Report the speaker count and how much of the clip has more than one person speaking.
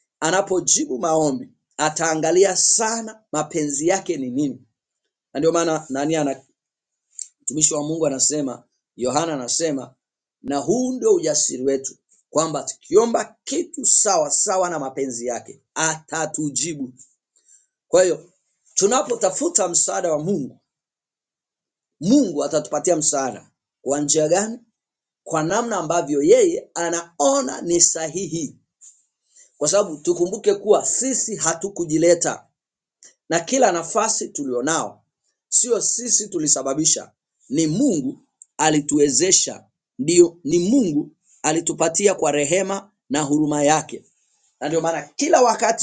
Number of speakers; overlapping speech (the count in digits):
1, no overlap